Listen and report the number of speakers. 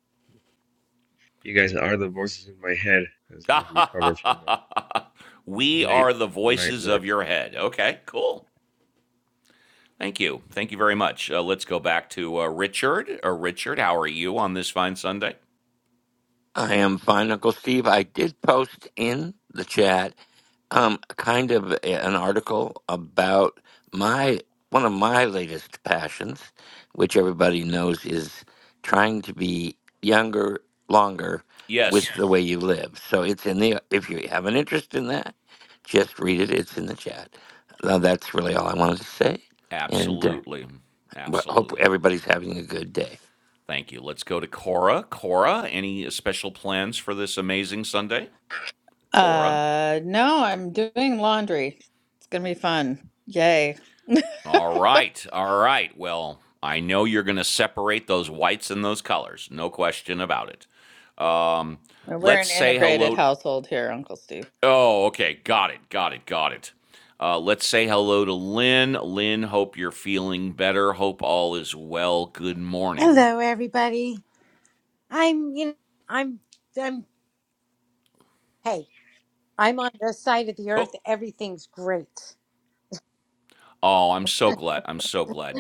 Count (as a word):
five